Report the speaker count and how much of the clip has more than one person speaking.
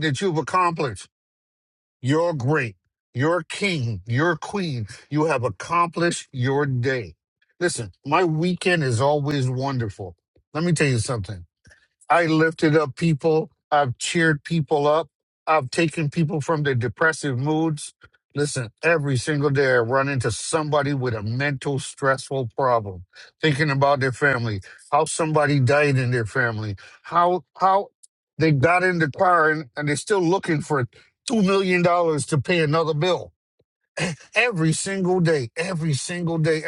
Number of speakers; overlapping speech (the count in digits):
1, no overlap